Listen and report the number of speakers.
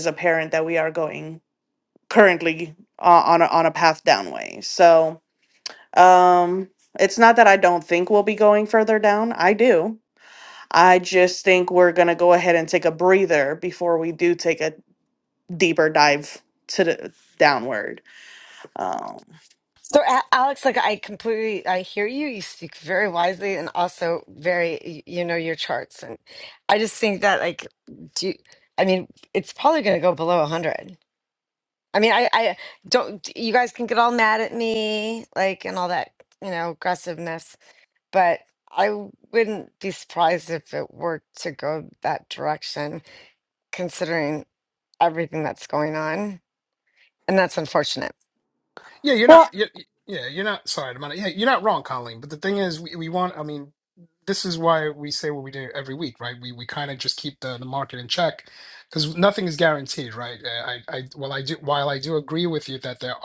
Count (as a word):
three